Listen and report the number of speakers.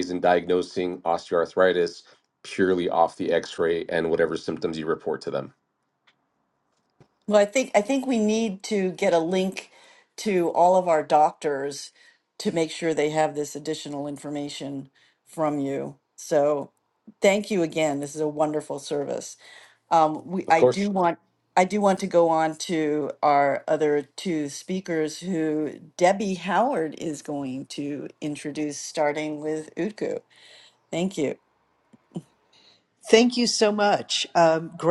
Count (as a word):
three